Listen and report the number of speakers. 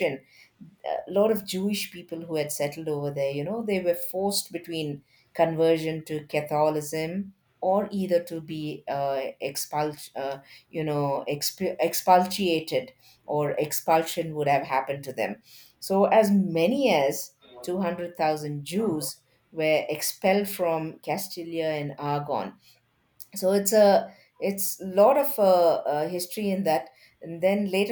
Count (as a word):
one